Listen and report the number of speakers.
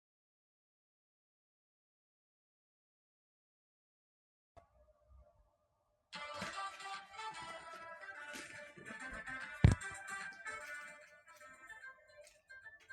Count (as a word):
zero